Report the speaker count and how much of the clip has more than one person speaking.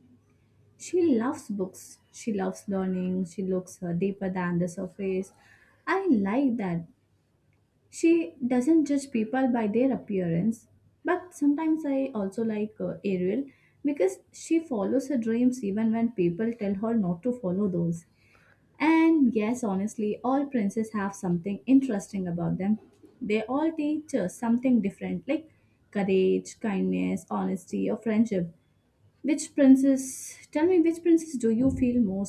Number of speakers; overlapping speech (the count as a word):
one, no overlap